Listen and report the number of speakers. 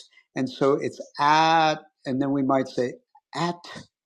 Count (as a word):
one